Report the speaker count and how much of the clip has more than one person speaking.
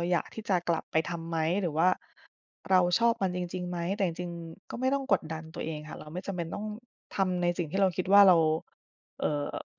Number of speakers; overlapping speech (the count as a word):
one, no overlap